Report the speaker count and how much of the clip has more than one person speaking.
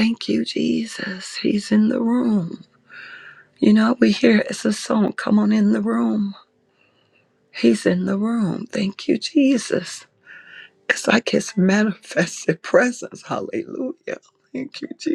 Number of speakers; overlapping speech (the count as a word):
one, no overlap